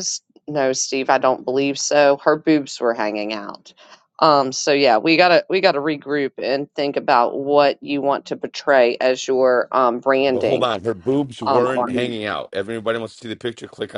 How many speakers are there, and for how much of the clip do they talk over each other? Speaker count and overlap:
two, about 8%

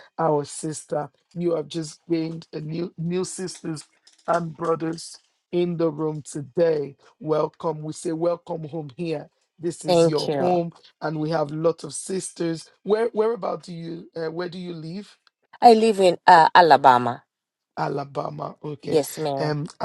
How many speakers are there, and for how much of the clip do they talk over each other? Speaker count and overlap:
two, about 4%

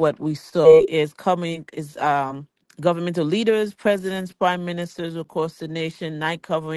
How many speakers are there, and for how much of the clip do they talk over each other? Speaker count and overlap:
one, no overlap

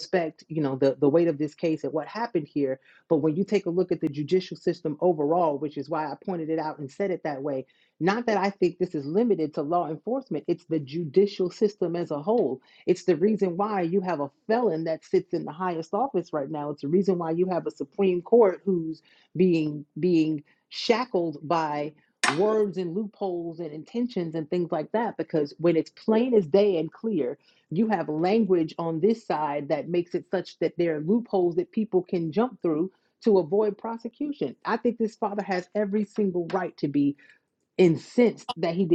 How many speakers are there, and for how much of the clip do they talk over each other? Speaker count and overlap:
one, no overlap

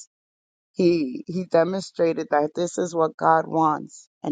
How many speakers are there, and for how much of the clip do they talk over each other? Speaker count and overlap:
one, no overlap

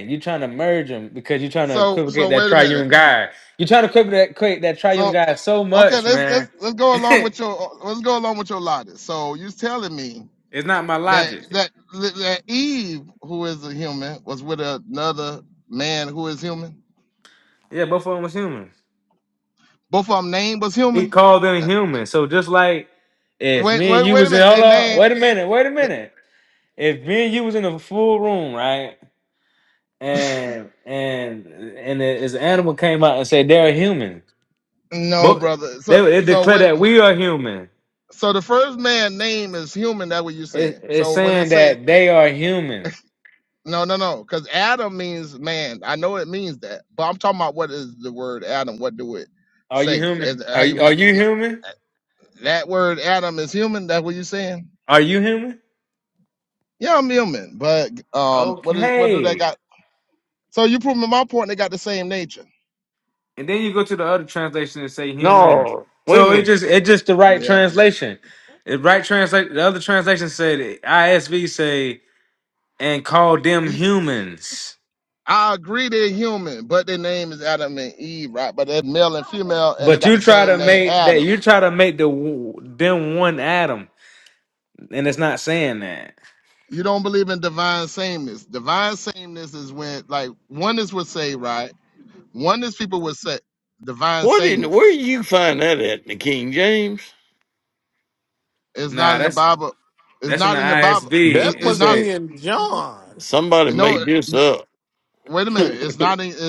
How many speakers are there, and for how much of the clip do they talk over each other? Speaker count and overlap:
four, about 14%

